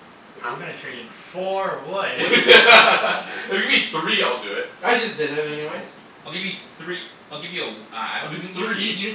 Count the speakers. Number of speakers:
4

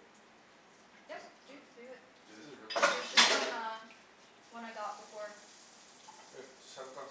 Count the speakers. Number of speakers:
2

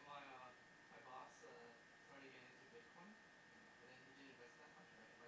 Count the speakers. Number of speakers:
1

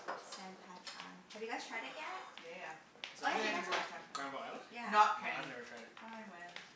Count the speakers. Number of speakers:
3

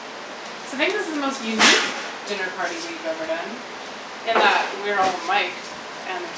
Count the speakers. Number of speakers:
1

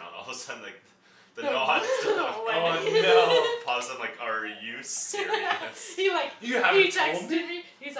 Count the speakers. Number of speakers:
3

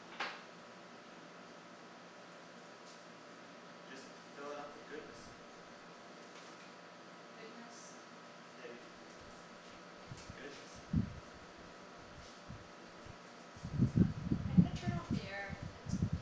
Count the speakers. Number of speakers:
2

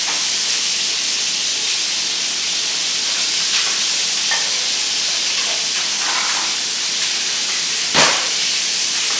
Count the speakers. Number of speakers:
0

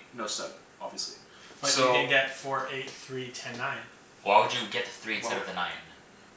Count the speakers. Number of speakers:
3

